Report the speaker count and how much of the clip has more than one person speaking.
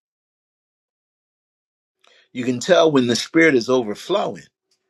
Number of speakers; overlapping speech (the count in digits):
1, no overlap